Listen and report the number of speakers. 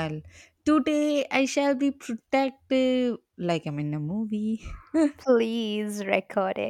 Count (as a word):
two